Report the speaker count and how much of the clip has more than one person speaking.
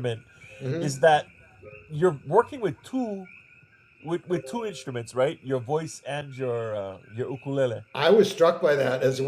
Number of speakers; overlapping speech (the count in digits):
2, about 1%